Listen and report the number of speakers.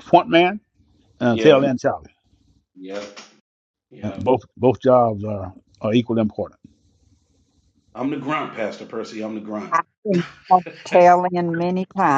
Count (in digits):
3